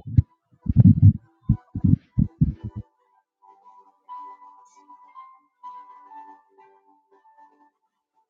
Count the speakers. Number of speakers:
0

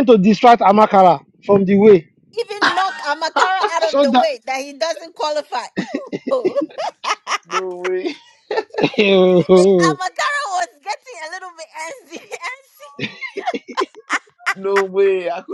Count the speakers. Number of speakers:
3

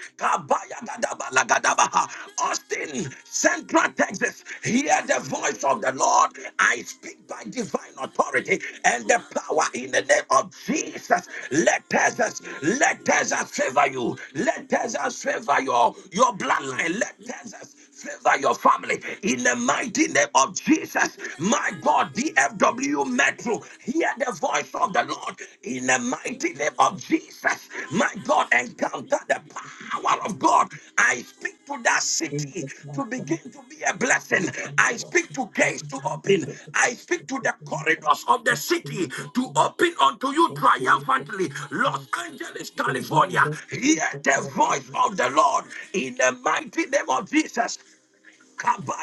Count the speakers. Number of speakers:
1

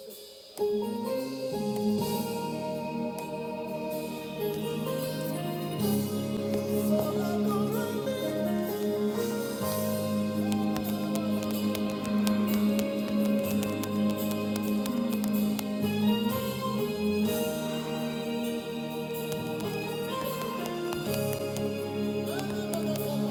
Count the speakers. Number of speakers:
0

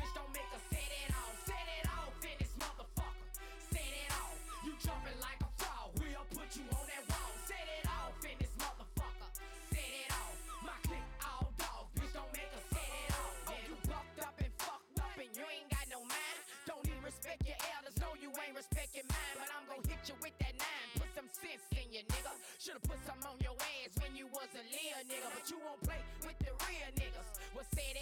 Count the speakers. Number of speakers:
0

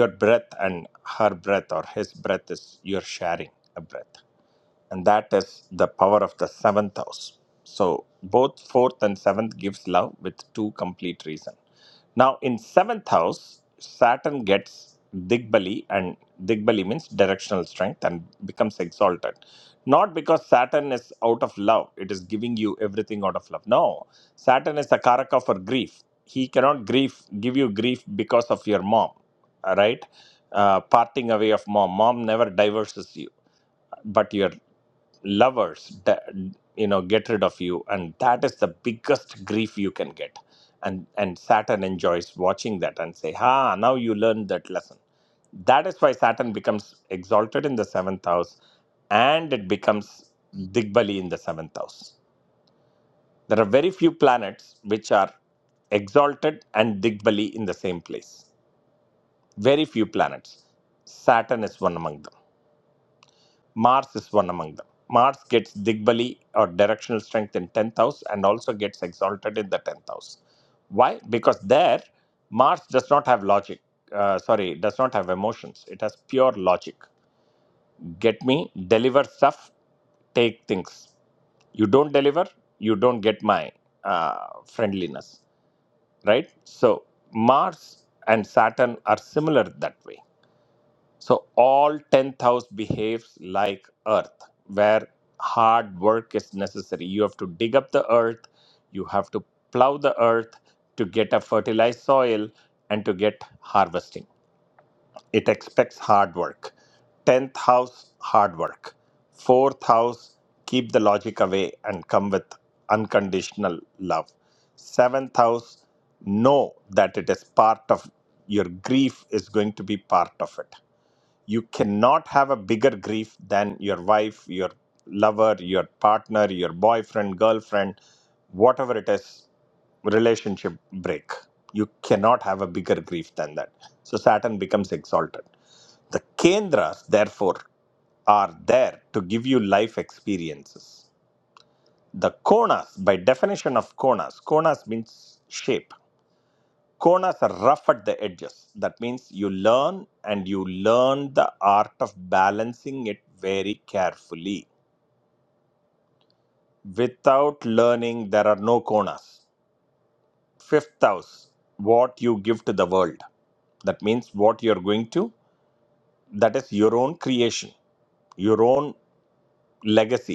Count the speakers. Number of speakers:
1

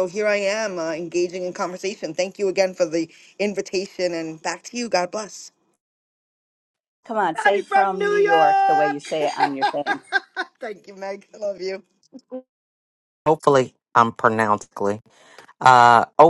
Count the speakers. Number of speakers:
3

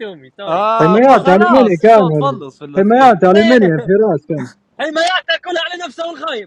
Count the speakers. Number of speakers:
3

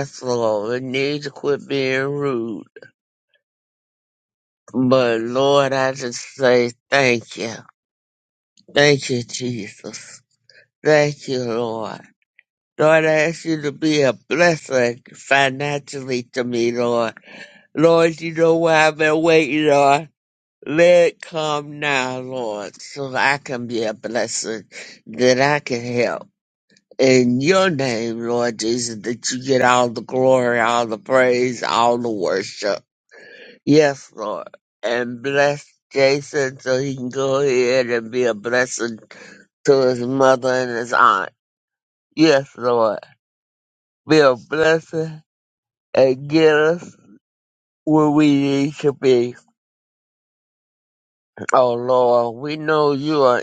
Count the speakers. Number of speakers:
1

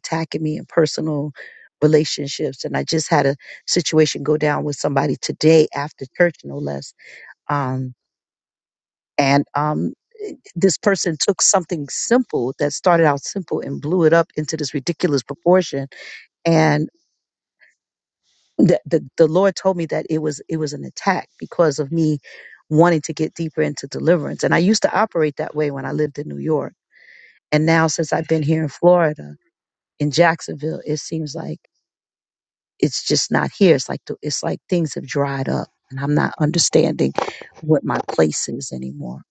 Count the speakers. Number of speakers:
1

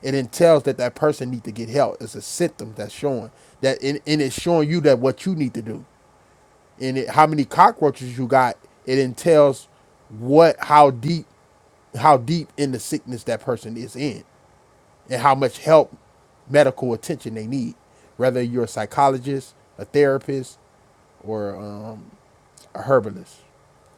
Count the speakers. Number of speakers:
1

